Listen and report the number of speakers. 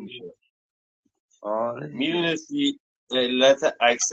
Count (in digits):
2